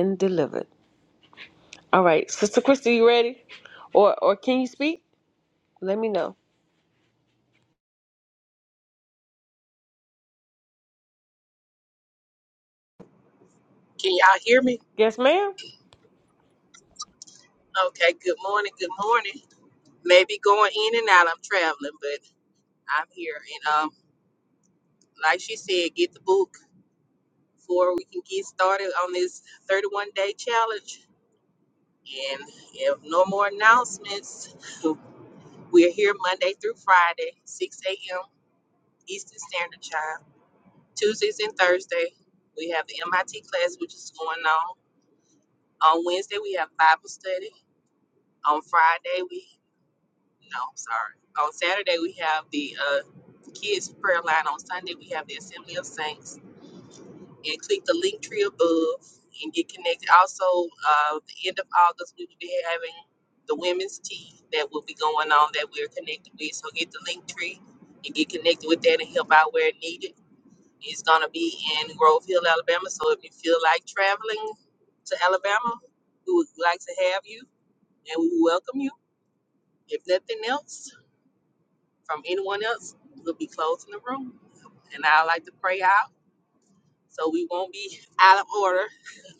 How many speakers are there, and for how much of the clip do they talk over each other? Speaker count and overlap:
2, no overlap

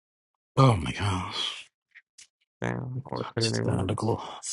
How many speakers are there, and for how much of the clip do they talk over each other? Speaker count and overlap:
2, about 16%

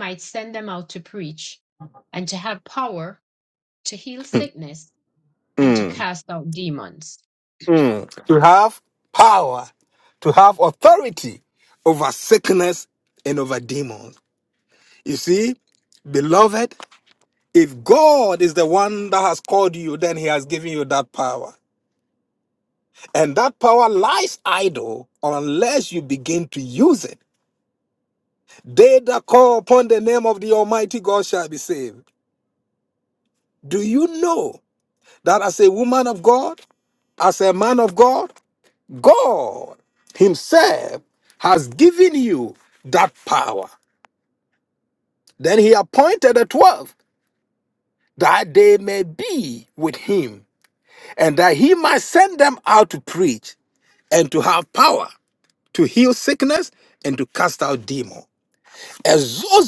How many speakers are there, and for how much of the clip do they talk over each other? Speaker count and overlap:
2, about 1%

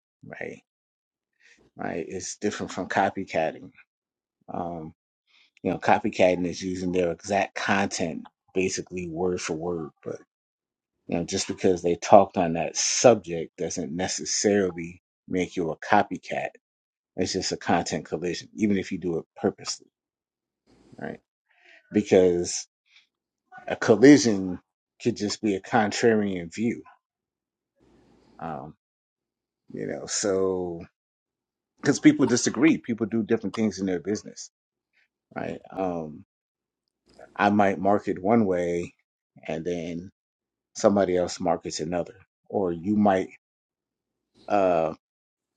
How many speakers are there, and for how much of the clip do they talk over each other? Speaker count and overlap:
1, no overlap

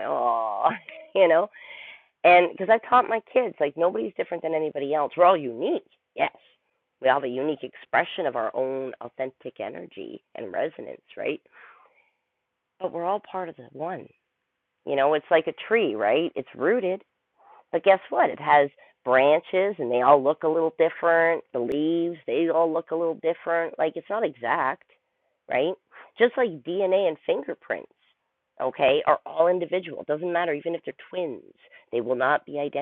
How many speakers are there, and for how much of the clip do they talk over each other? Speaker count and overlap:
1, no overlap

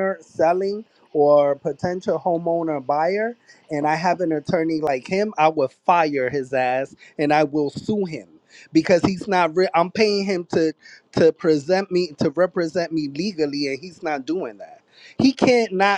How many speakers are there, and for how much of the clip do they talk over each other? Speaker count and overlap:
1, no overlap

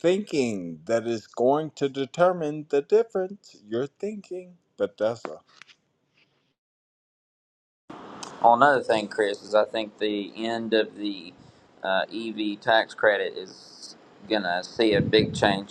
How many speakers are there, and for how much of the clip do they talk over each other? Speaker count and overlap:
2, no overlap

